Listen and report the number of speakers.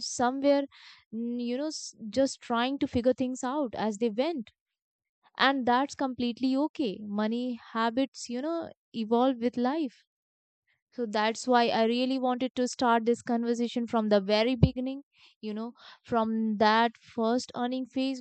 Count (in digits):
1